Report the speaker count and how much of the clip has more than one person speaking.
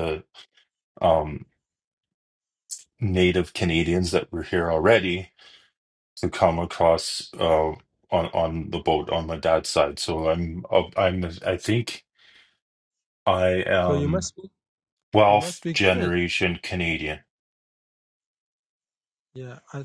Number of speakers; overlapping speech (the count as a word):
two, about 6%